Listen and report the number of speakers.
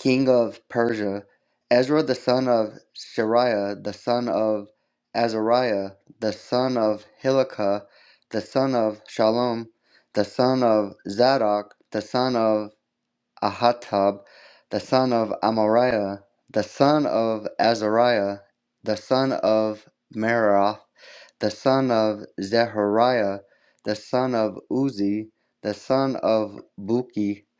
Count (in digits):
1